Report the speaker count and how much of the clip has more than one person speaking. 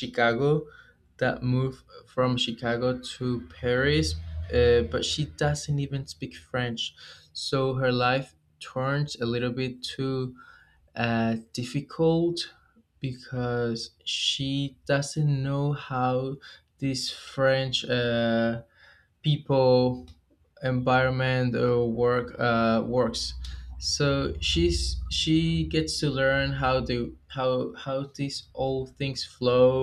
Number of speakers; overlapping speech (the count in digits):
1, no overlap